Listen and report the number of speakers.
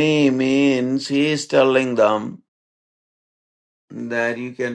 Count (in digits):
1